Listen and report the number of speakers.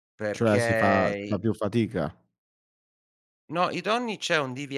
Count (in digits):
2